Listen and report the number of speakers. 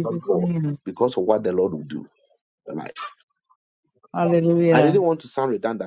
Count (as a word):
two